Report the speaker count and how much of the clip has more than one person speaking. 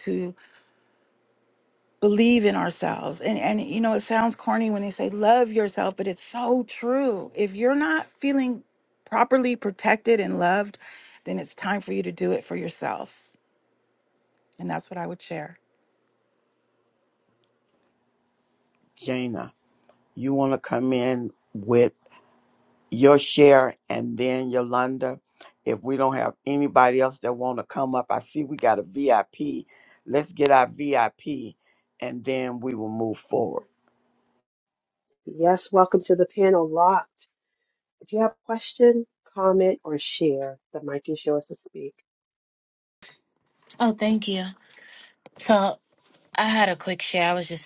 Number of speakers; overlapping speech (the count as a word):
four, no overlap